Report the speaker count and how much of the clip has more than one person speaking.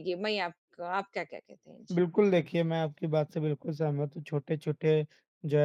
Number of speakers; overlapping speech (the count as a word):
two, no overlap